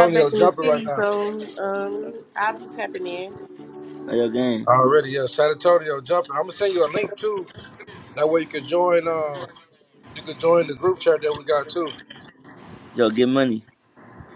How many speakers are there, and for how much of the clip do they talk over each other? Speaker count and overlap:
three, about 8%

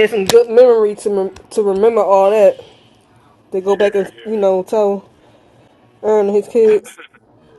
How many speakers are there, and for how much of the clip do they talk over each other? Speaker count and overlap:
one, no overlap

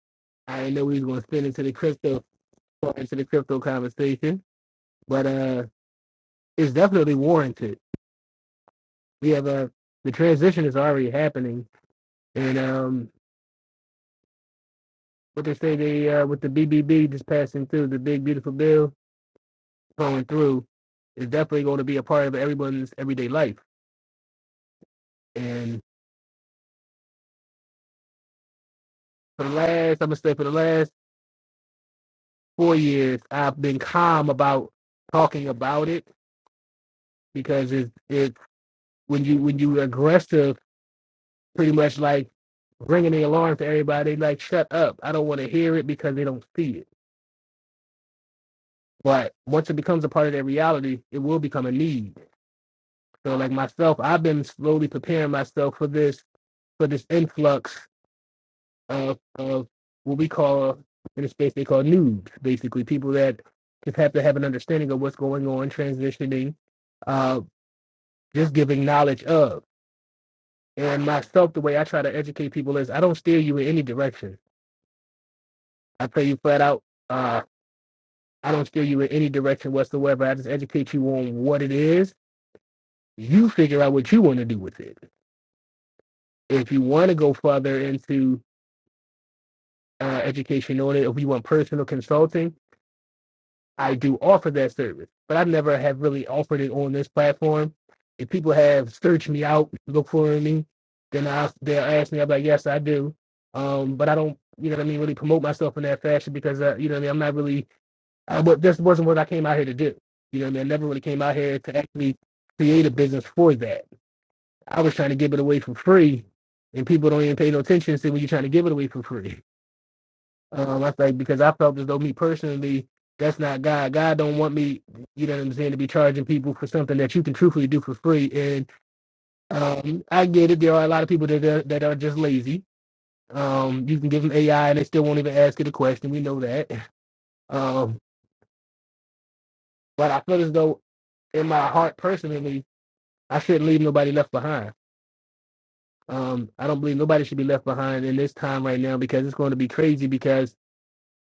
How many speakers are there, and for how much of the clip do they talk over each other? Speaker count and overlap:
one, no overlap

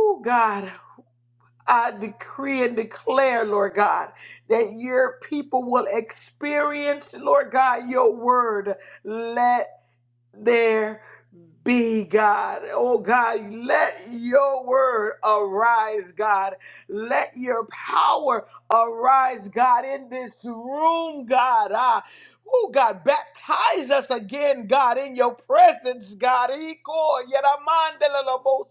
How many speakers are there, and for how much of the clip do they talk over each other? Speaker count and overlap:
one, no overlap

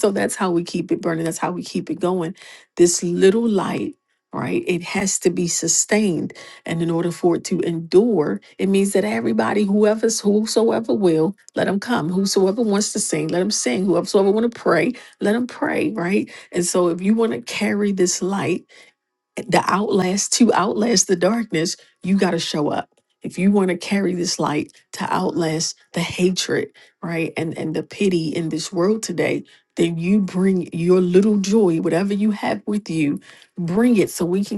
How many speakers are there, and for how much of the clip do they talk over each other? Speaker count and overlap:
one, no overlap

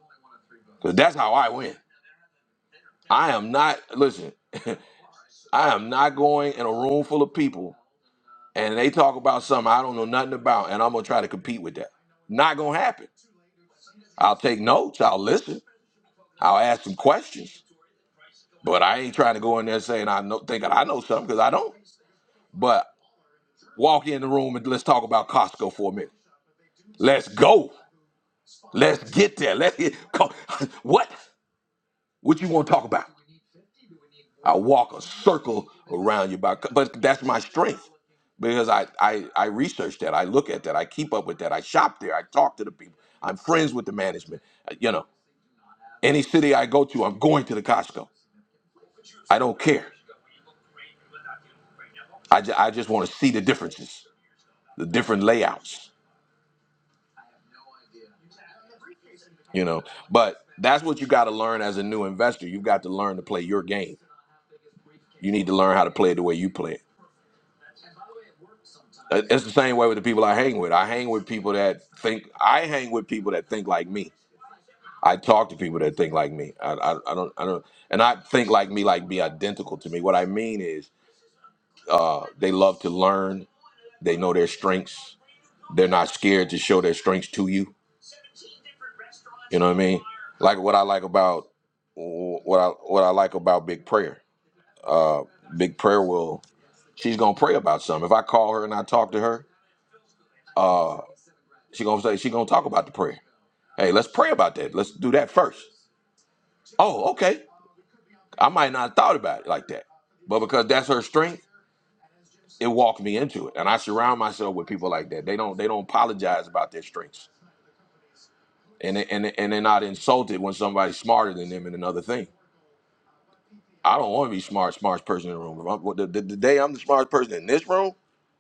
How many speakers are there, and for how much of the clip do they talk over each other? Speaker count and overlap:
one, no overlap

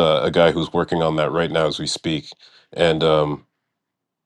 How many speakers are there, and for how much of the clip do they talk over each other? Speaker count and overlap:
one, no overlap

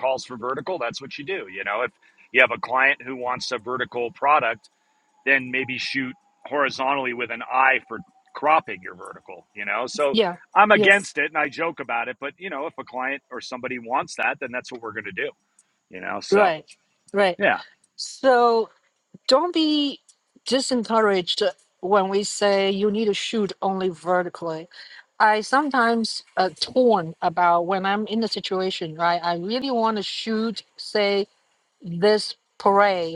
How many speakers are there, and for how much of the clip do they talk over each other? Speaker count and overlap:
two, about 1%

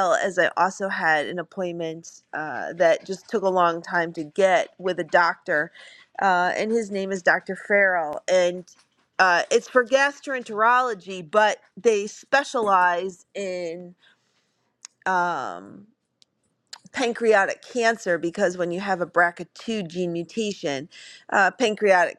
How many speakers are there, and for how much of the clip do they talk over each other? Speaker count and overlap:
one, no overlap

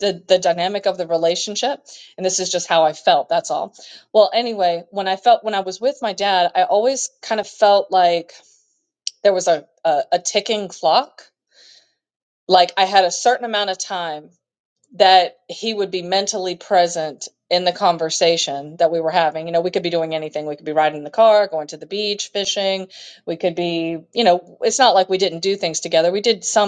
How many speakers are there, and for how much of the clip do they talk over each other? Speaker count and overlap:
one, no overlap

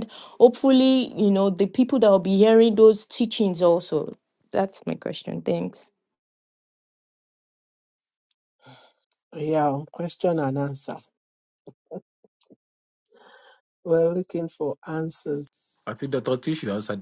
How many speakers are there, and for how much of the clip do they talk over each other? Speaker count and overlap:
three, no overlap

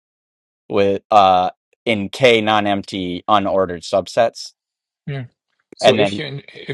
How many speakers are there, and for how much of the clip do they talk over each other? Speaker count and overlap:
two, about 6%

